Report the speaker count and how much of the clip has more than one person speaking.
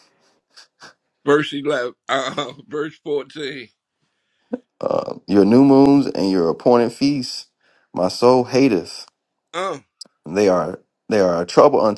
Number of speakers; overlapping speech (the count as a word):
two, no overlap